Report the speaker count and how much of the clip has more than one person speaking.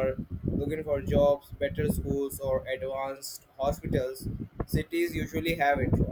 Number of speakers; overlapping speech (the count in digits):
1, no overlap